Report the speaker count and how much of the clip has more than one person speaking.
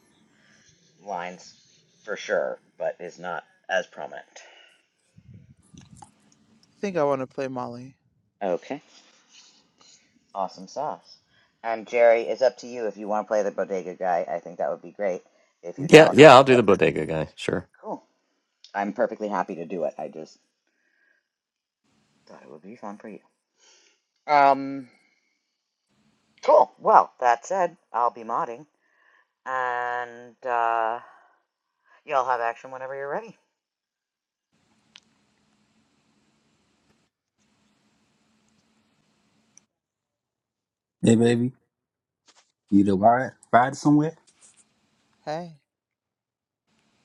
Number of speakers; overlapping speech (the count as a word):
four, about 1%